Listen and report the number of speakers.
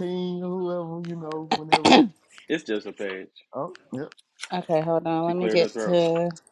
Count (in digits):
3